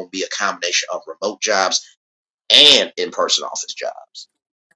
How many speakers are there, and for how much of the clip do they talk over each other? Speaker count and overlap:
1, no overlap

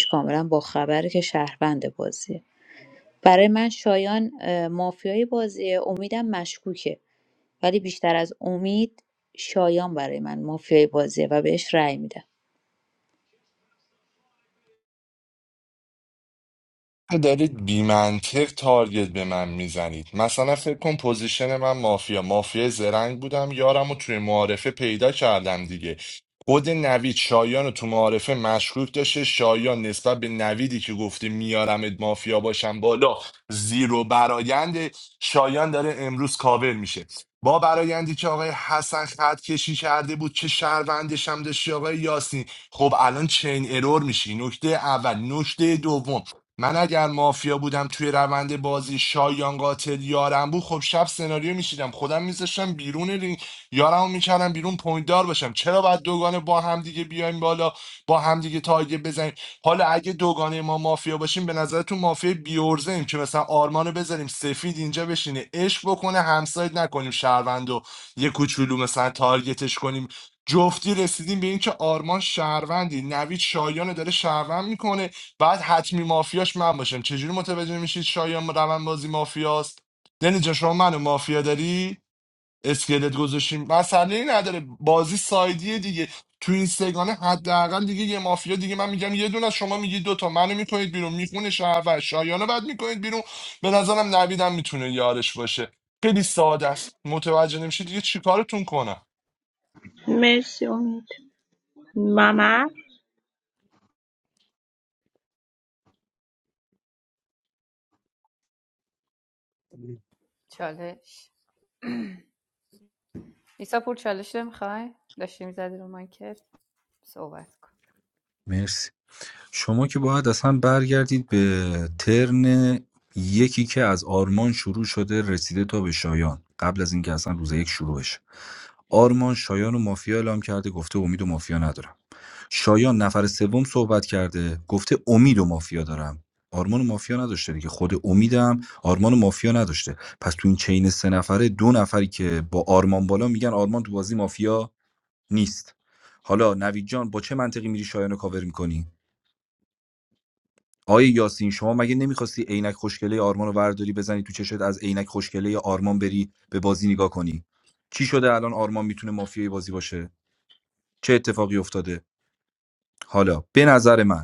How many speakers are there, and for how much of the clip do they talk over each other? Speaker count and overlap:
5, no overlap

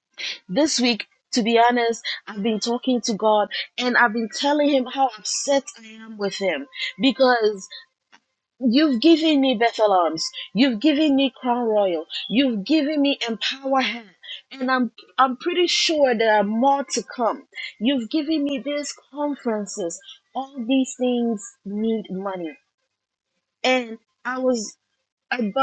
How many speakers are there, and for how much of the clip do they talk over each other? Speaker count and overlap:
1, no overlap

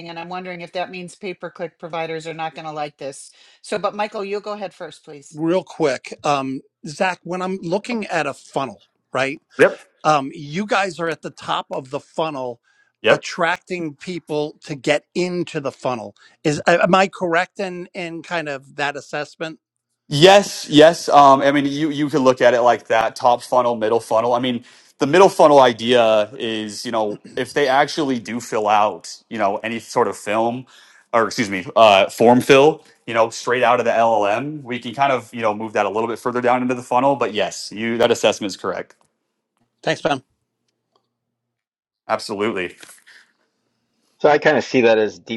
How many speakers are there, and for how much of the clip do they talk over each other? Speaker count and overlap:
4, under 1%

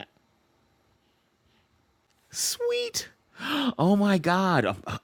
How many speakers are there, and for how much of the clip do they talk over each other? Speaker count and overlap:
1, no overlap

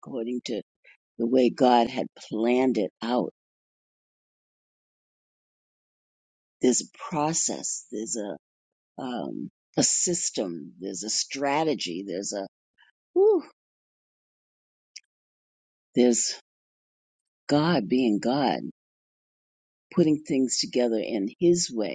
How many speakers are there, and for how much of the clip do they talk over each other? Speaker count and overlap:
1, no overlap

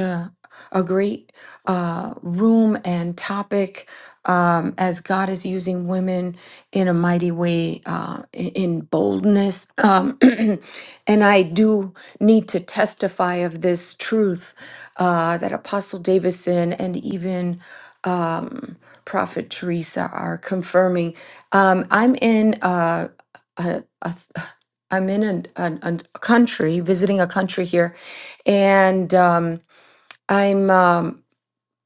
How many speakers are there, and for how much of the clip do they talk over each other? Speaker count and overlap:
1, no overlap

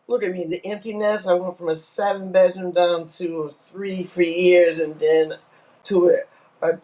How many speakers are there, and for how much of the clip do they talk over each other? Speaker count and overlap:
1, no overlap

